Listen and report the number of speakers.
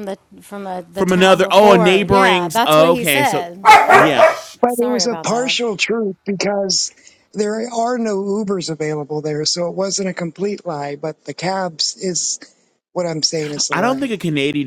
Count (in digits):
3